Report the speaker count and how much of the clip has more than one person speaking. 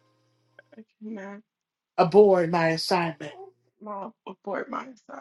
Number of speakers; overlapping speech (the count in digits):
2, no overlap